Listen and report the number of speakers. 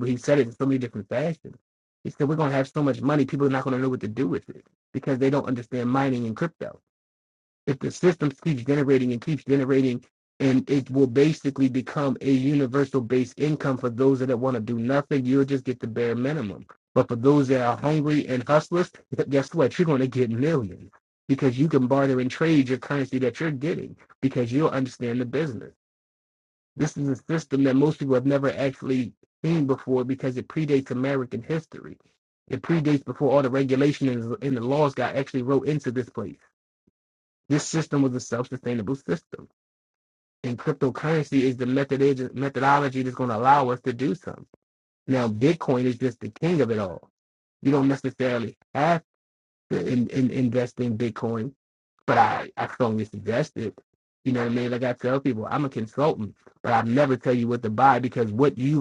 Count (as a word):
one